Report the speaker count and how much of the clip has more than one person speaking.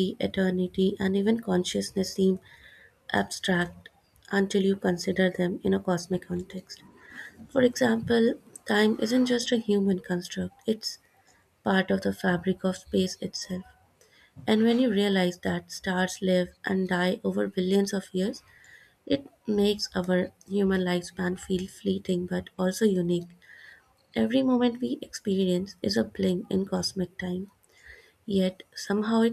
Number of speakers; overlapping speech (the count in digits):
1, no overlap